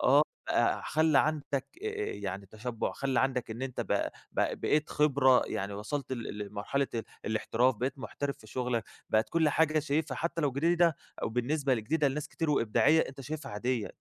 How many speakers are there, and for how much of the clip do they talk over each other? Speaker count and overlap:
1, no overlap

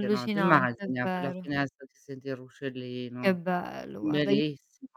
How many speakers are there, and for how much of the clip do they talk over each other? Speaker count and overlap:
2, about 39%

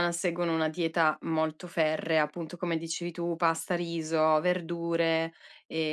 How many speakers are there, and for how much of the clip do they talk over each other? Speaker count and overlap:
1, no overlap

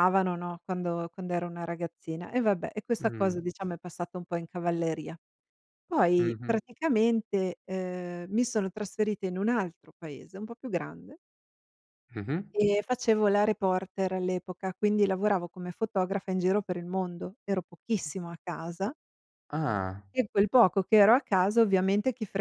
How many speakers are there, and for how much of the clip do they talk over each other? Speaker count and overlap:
2, about 3%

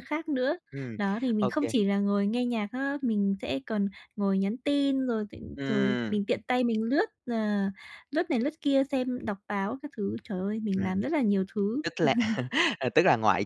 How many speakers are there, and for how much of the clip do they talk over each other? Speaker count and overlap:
2, about 8%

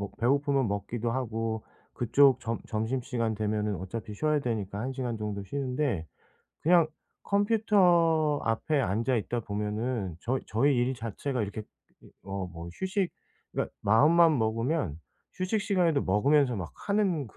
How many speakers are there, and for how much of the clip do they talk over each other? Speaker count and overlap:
1, no overlap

